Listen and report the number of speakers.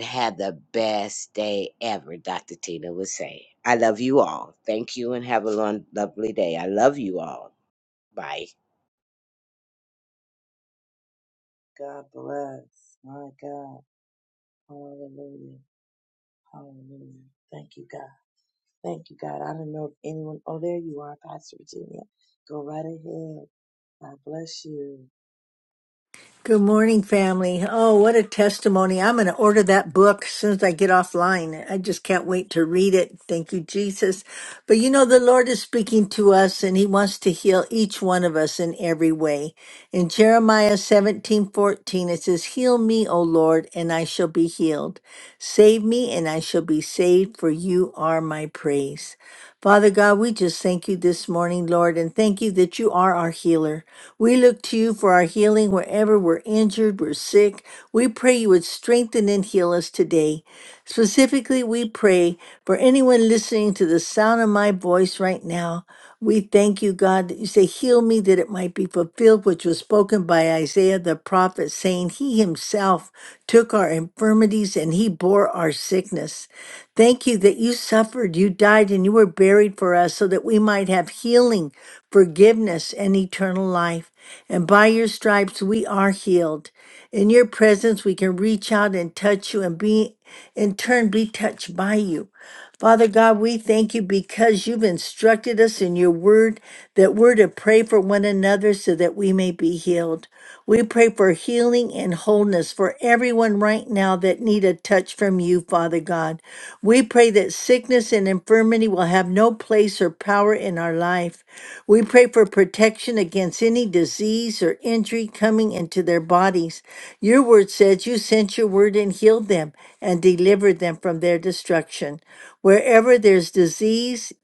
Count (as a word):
three